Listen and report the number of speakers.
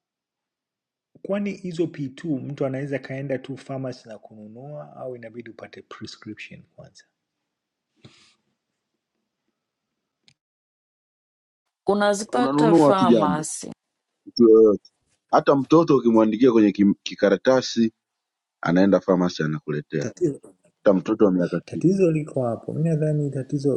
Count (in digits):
3